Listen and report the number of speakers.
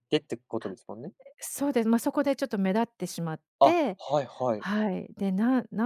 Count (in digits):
2